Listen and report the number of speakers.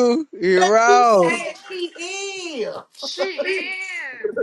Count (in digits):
3